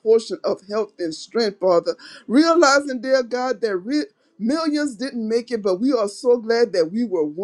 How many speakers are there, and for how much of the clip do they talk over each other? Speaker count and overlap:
one, no overlap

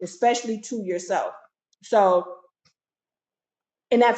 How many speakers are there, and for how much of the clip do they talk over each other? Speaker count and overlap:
one, no overlap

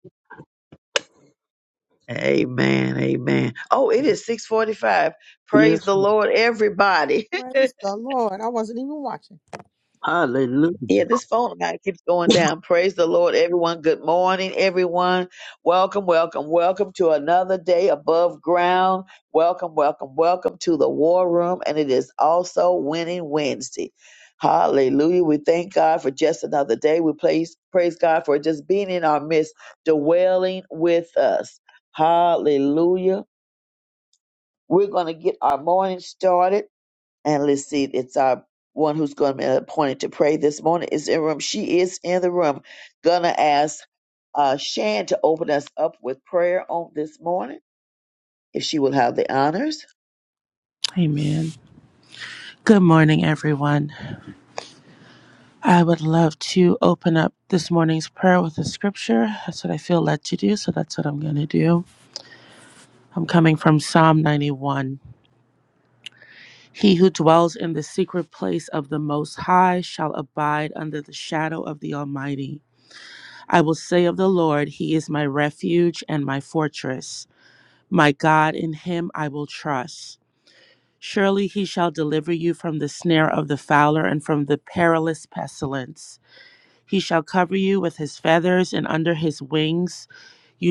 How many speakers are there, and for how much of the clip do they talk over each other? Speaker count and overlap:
four, under 1%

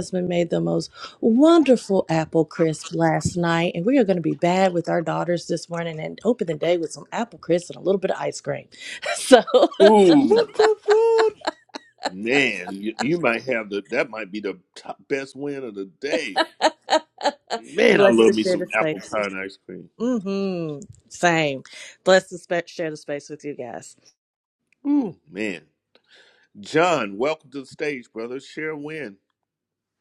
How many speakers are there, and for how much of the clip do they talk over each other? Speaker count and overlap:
three, about 5%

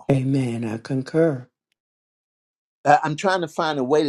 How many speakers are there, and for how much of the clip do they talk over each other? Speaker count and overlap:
two, no overlap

